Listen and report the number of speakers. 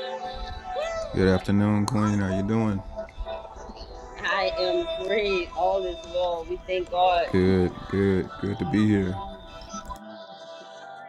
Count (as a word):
two